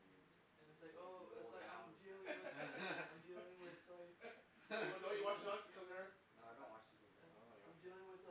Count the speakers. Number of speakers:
three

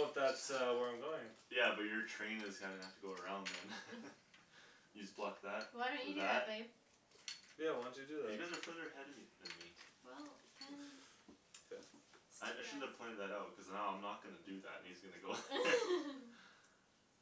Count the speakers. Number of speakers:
three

